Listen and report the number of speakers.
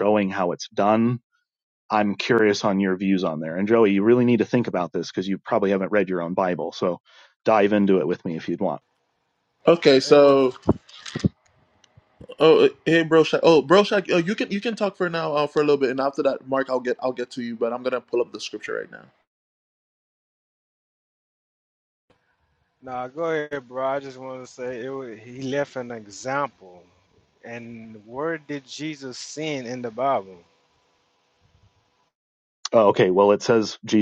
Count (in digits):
3